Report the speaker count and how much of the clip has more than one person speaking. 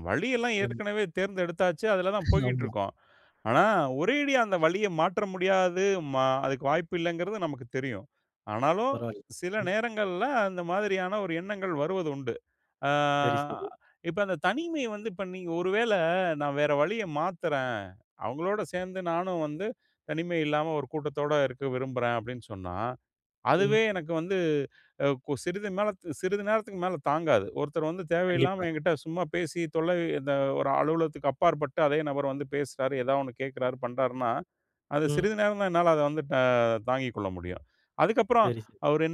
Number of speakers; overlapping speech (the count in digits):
2, about 4%